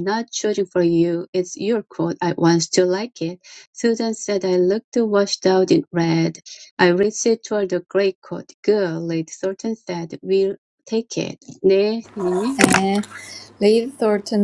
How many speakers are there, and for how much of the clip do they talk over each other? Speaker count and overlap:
2, about 1%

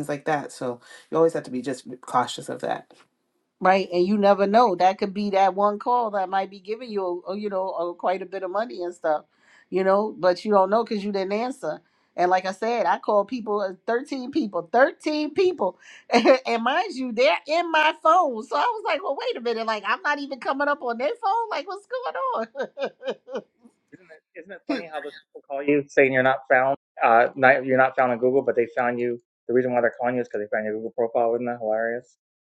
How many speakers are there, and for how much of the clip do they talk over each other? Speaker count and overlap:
3, under 1%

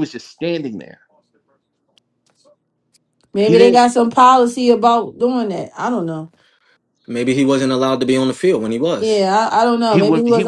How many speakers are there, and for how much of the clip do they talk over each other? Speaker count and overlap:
3, about 11%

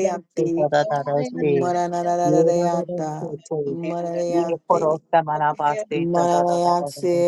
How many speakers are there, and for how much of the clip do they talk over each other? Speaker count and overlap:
2, about 47%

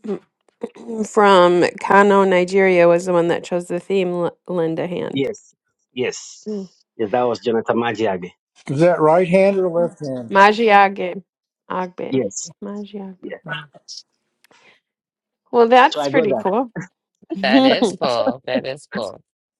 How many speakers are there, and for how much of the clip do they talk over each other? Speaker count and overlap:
4, about 4%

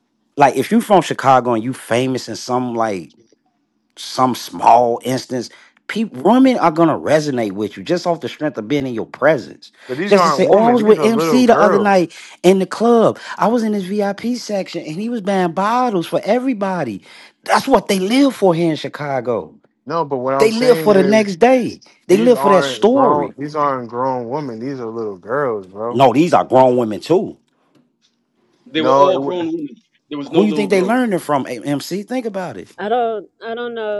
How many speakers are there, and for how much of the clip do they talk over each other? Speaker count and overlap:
4, about 15%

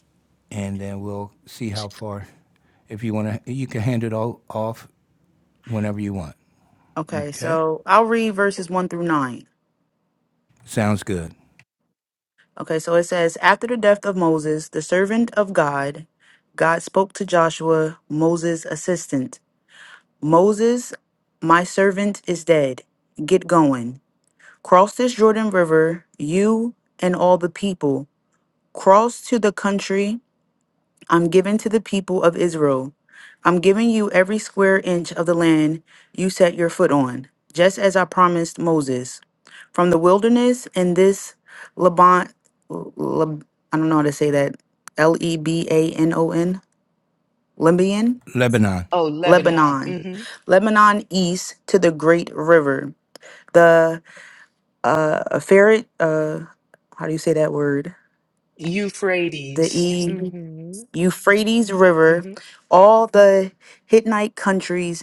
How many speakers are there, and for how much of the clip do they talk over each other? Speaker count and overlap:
3, about 2%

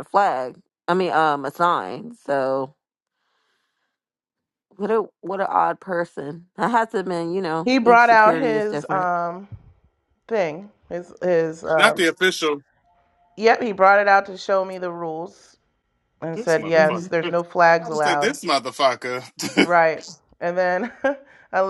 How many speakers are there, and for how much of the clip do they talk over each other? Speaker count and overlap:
3, about 15%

